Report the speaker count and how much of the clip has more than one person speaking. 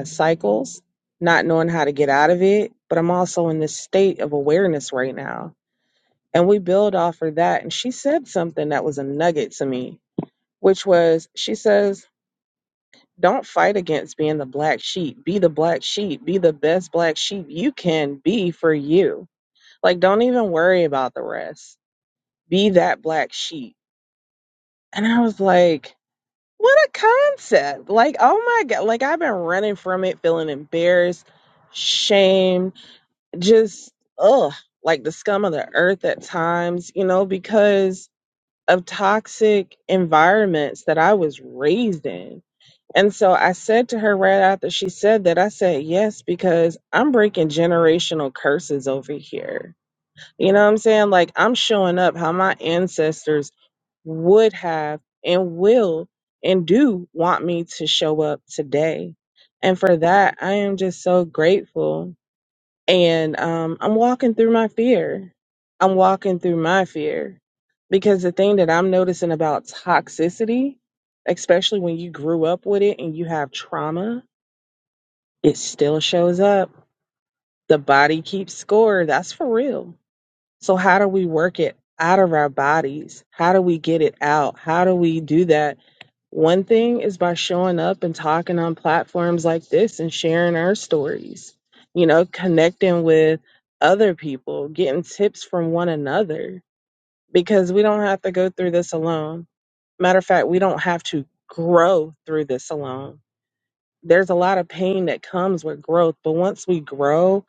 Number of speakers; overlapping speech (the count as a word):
one, no overlap